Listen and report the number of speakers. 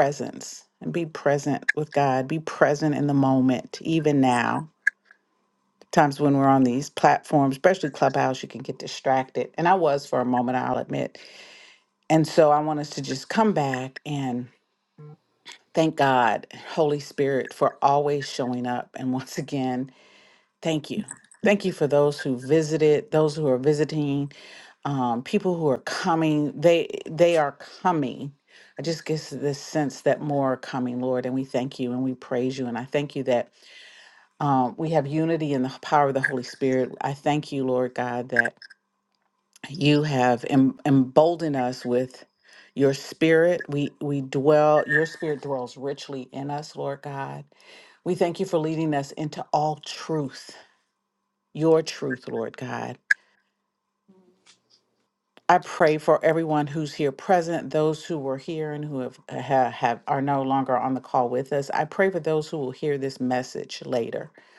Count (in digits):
1